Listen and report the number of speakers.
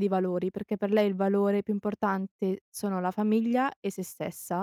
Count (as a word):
one